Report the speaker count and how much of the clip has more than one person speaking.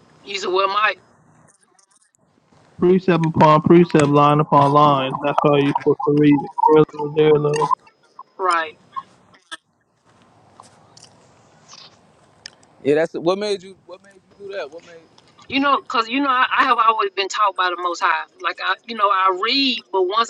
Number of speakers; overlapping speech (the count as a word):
three, no overlap